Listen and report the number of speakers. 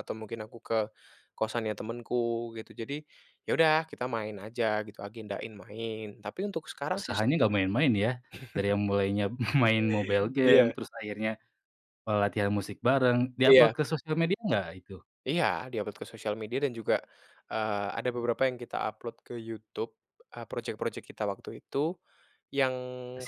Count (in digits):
2